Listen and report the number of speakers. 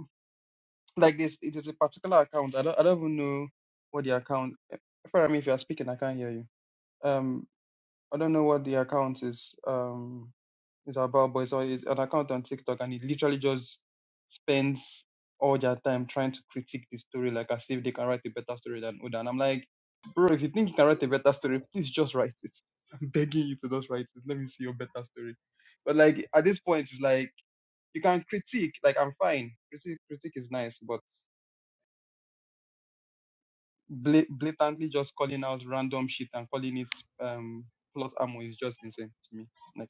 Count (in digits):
1